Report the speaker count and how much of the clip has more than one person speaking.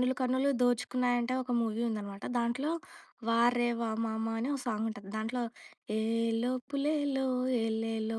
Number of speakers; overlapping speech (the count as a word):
one, no overlap